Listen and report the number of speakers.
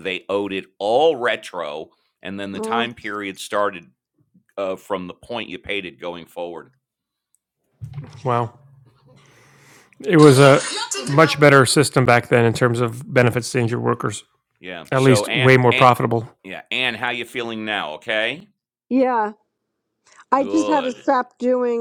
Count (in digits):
3